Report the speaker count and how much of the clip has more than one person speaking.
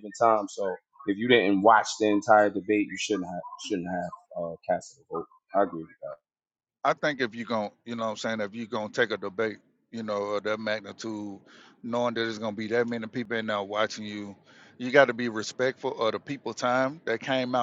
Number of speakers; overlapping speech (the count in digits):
2, no overlap